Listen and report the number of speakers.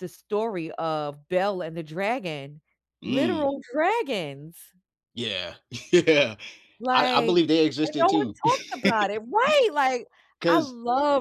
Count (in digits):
2